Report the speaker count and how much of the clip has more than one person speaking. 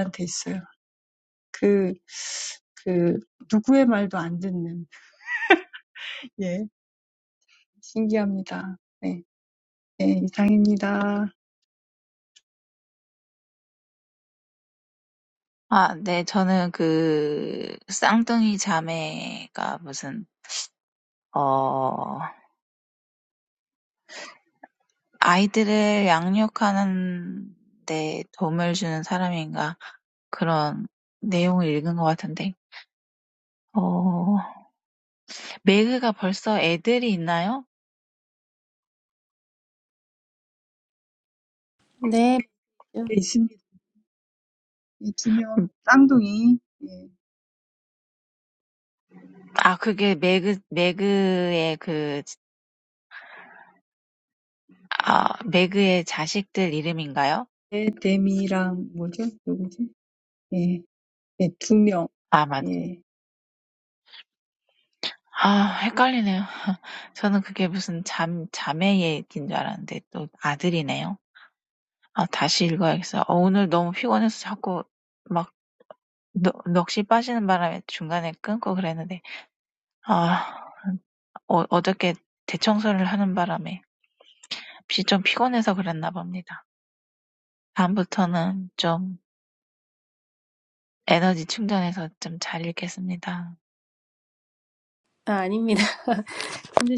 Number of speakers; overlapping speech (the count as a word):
three, under 1%